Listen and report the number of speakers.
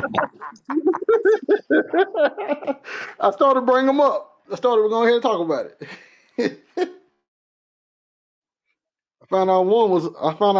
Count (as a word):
one